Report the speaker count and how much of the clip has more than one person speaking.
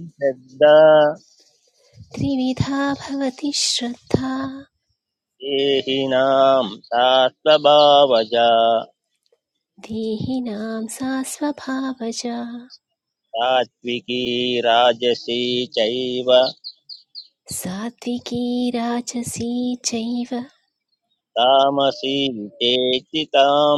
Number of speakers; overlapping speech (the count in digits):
2, no overlap